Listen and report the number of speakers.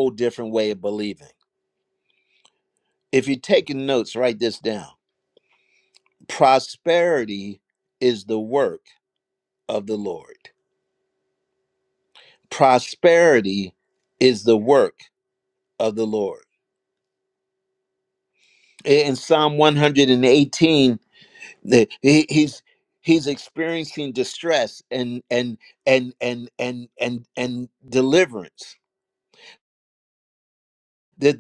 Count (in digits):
1